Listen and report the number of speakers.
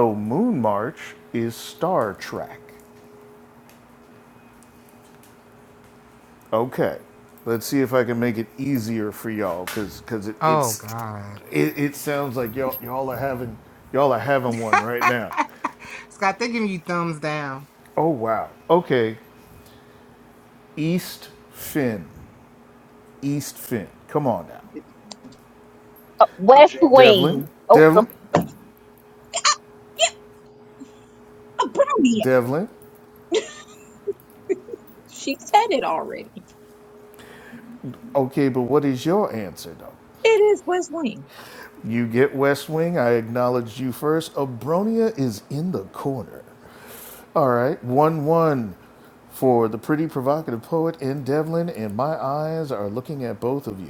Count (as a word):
four